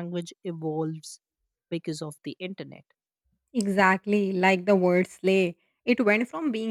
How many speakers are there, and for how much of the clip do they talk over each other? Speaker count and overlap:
2, no overlap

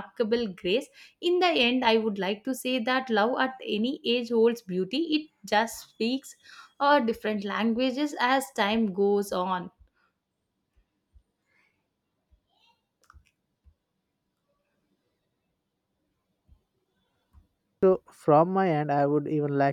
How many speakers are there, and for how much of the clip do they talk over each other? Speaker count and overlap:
2, no overlap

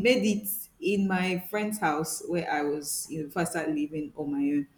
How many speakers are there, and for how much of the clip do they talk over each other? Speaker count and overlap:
1, no overlap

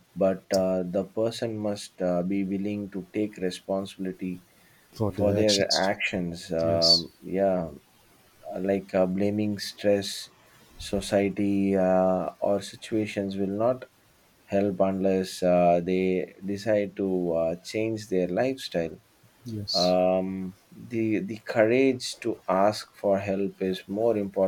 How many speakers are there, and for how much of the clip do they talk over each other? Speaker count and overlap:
2, about 6%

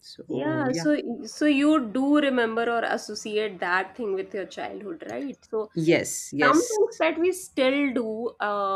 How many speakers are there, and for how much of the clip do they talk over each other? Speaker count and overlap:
2, about 10%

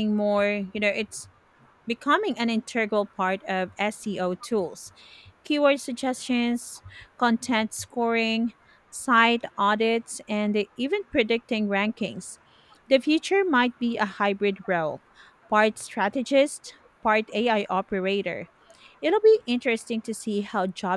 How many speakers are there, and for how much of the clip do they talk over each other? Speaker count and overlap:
1, no overlap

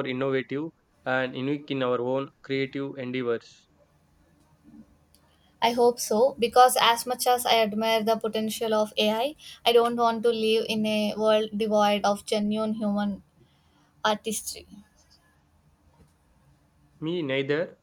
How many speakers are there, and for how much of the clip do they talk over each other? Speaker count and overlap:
2, no overlap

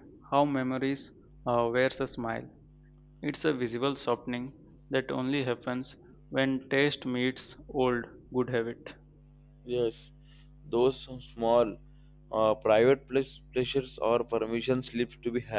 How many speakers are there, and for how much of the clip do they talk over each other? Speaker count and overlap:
2, no overlap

